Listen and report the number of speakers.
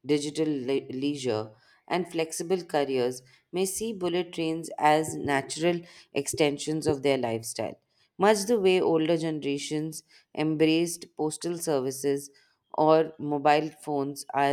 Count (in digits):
1